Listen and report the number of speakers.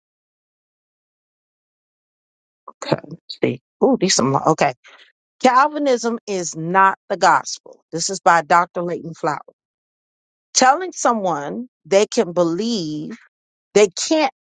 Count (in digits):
1